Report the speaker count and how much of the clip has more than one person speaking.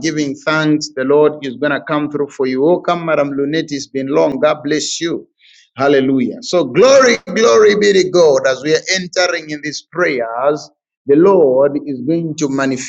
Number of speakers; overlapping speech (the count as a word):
one, no overlap